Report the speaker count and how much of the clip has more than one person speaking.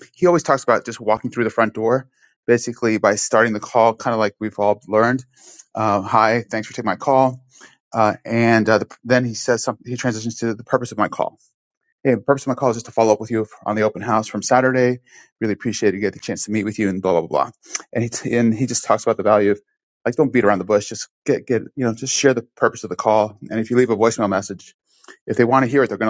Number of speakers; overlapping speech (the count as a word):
one, no overlap